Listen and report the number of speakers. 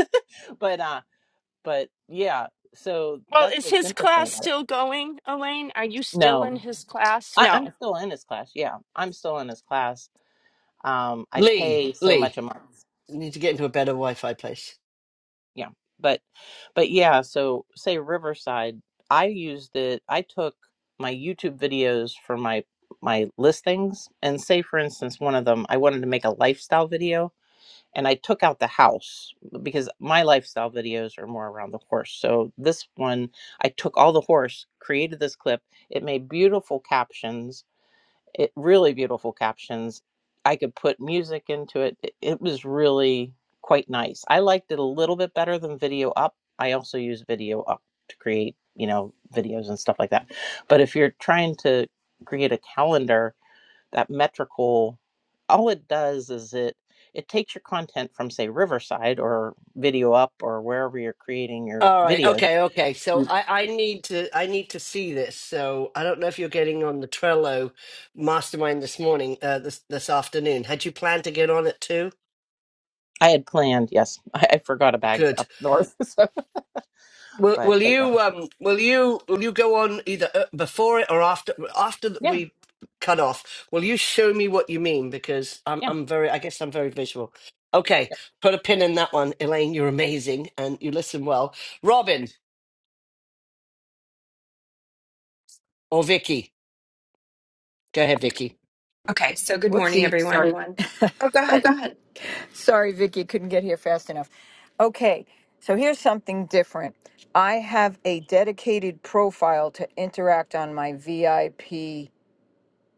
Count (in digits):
5